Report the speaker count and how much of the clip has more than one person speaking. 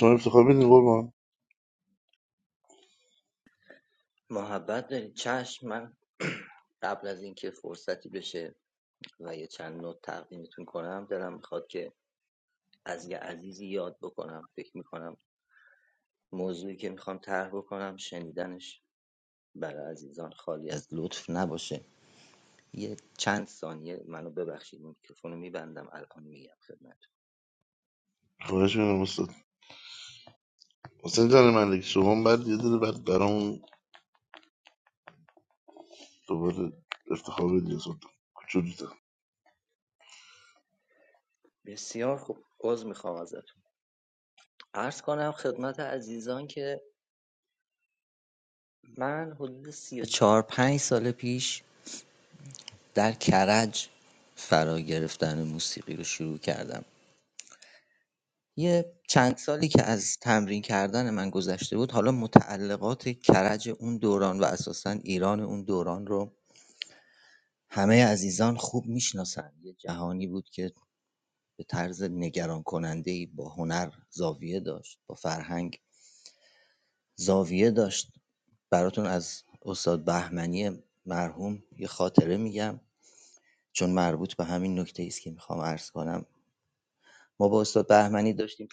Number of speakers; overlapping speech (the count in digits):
2, no overlap